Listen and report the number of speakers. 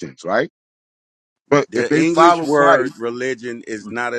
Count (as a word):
two